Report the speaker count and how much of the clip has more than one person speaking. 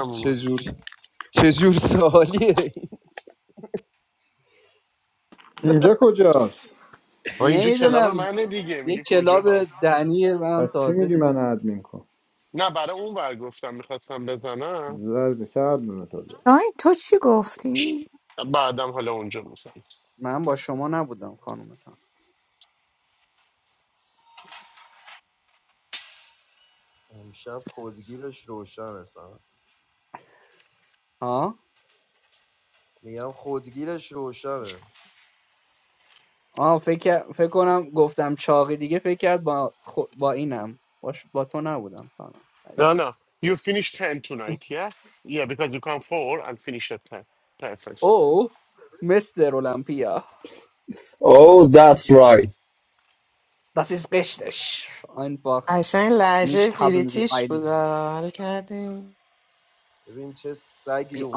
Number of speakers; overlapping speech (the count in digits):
7, about 7%